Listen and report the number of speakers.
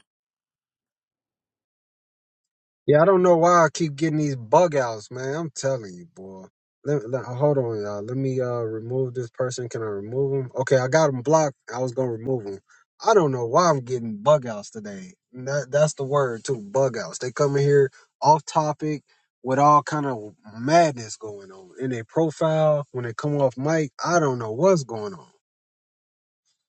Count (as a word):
one